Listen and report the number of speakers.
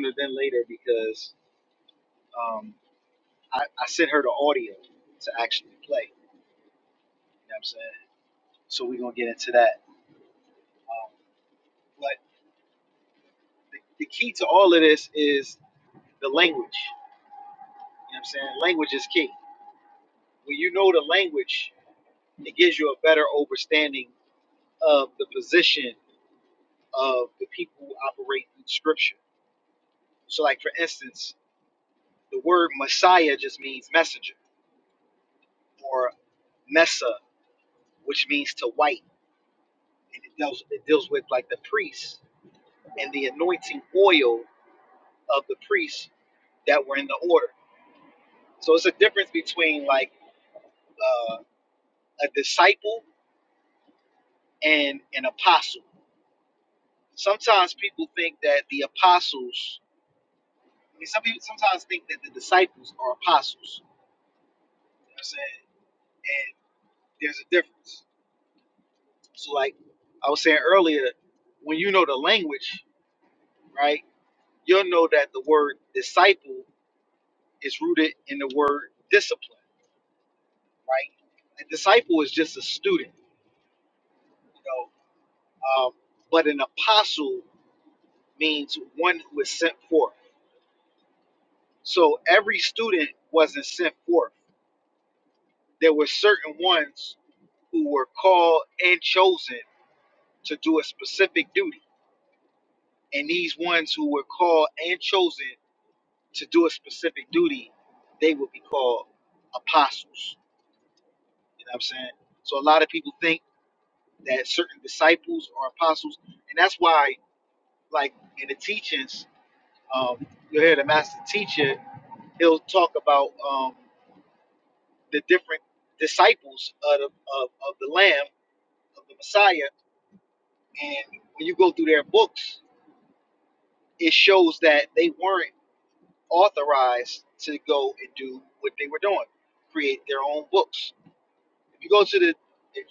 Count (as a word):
one